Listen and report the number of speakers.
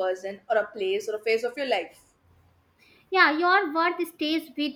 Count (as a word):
two